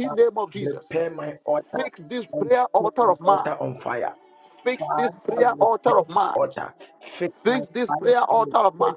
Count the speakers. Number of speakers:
two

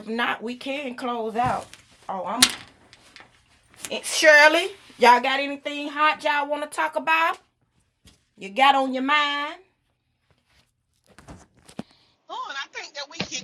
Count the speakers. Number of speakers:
two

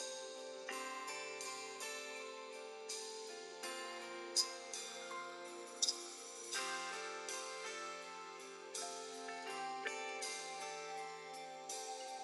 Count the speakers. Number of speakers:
zero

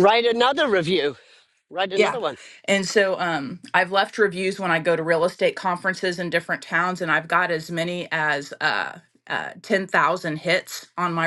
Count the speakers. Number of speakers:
two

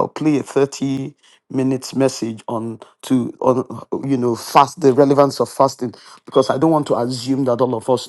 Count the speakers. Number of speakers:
one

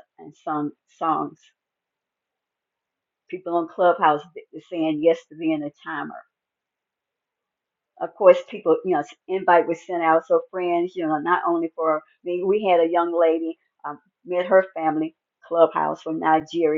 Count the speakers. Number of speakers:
one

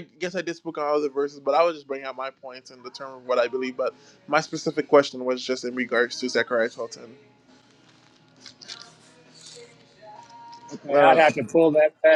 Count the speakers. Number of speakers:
two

